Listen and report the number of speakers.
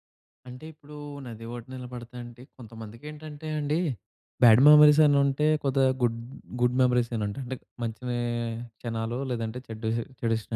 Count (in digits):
1